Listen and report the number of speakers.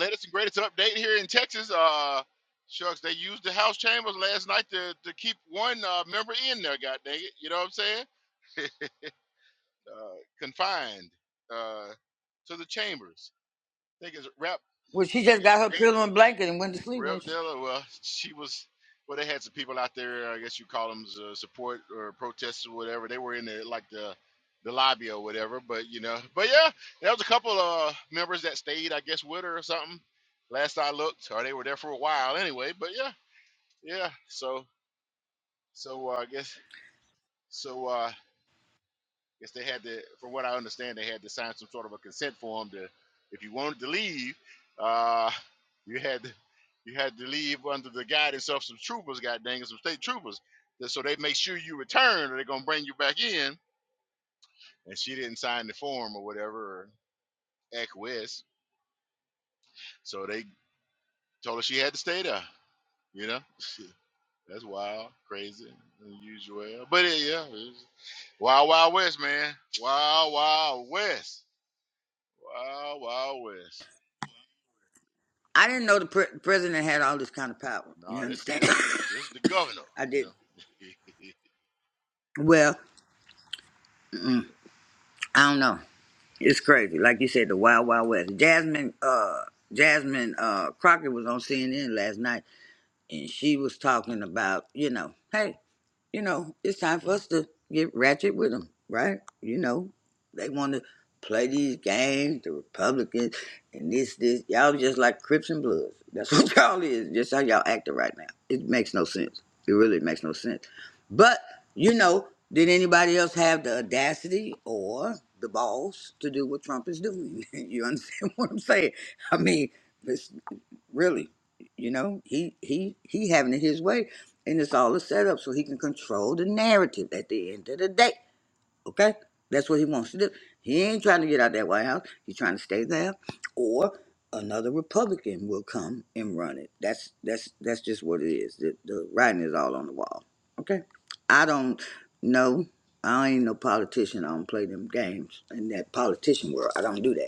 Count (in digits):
2